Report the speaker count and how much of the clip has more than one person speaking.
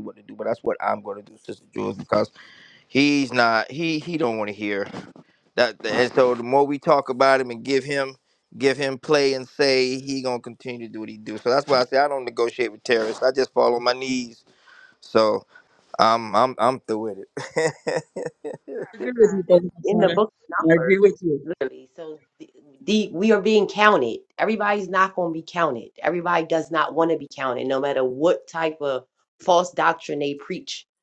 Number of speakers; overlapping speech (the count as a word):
three, about 2%